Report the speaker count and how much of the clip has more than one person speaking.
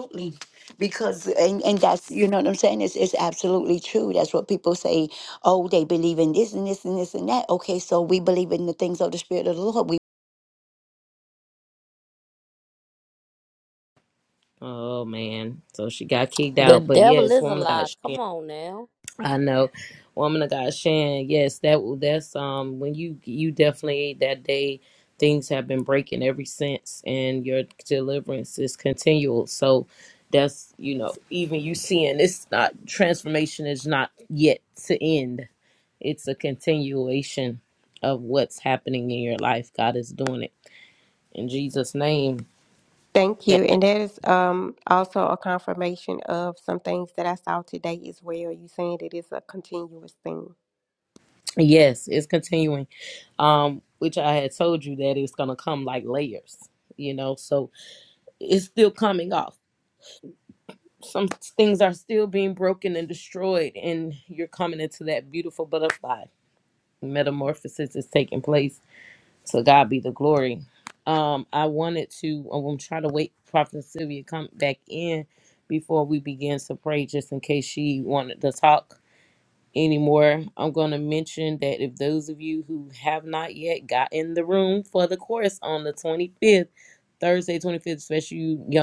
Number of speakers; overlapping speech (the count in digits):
4, about 2%